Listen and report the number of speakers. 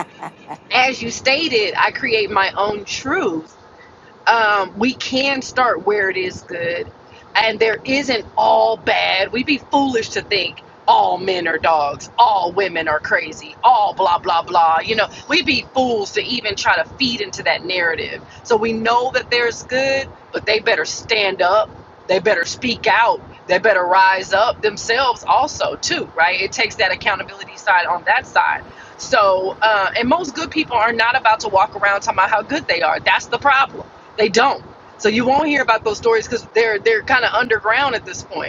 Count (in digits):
1